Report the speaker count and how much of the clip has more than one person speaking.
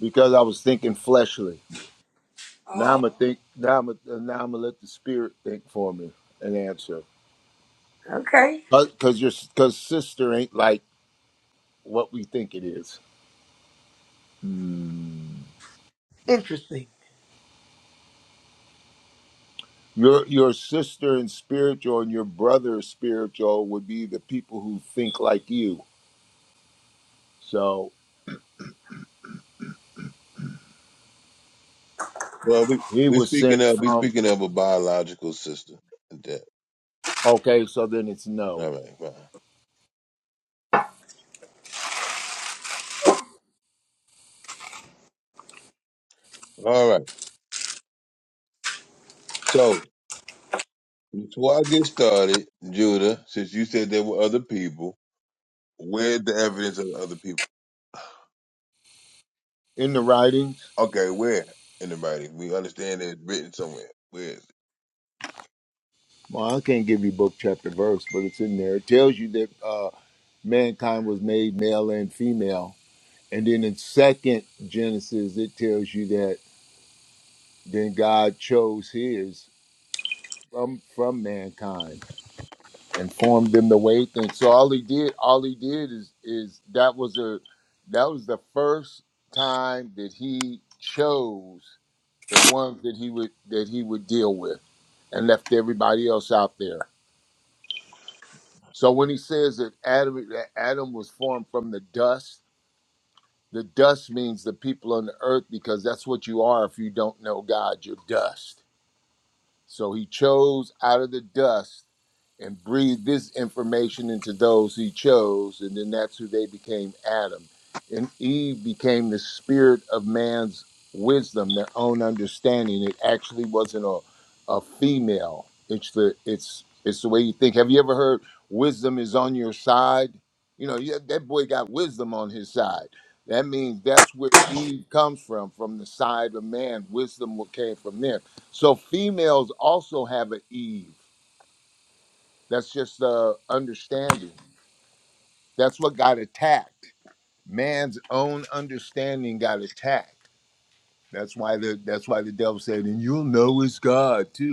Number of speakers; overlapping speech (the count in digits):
3, about 1%